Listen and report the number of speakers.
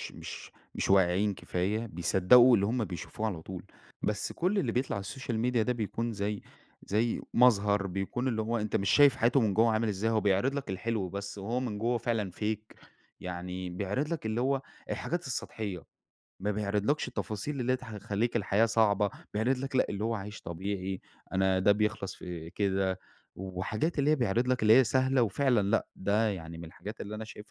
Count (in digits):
1